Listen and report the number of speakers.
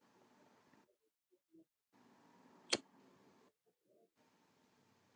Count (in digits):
0